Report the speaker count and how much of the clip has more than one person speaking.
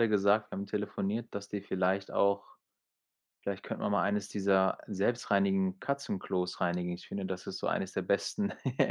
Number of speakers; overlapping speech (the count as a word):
one, no overlap